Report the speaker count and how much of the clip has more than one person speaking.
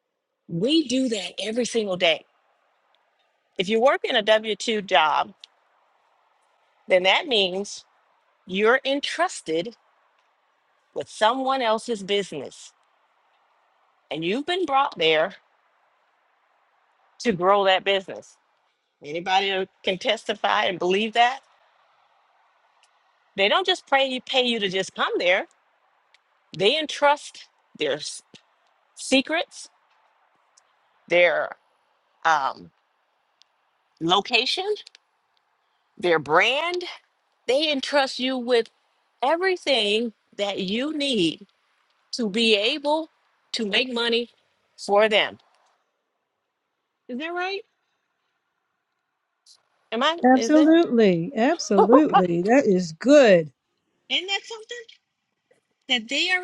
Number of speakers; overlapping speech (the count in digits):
2, about 1%